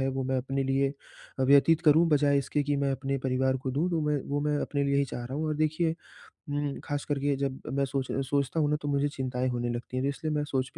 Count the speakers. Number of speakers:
1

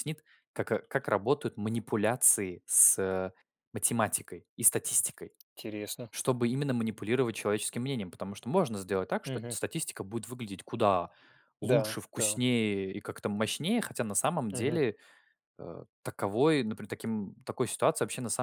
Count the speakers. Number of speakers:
2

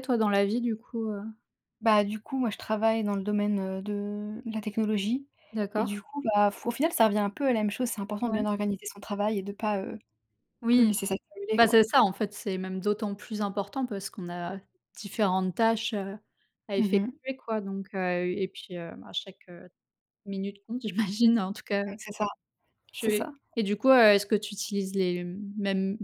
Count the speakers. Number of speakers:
2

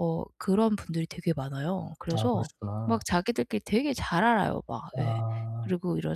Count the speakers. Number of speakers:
2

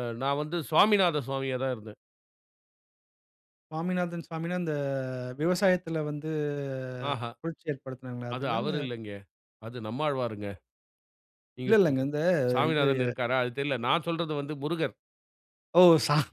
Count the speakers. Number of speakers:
2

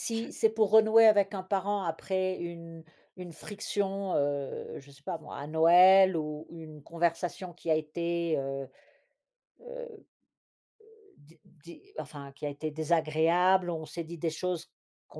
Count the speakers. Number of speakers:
1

